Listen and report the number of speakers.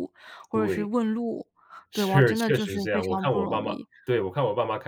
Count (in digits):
2